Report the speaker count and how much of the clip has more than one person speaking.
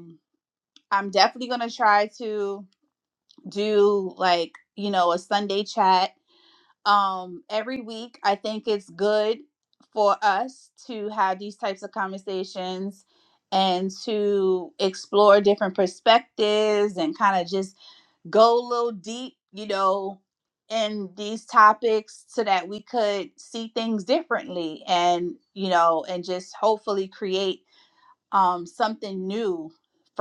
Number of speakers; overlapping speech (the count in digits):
1, no overlap